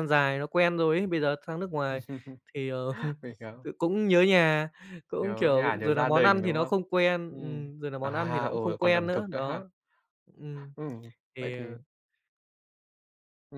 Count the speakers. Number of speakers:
2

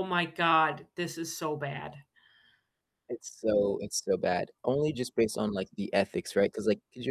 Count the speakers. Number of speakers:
2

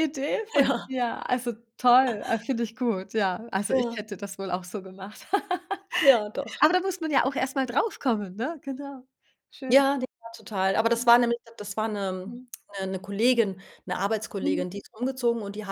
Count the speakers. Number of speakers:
2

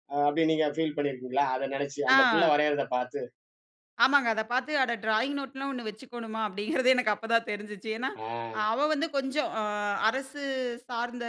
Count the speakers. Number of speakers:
2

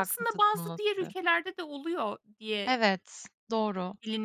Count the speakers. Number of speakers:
2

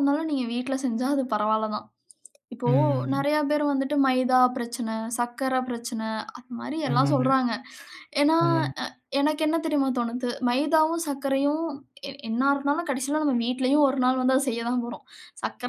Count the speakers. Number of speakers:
2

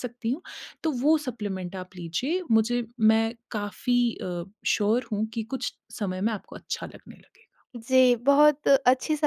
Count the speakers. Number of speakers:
2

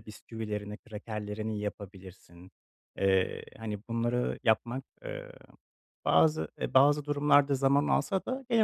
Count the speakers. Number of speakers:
1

